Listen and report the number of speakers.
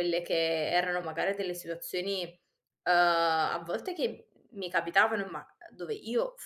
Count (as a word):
one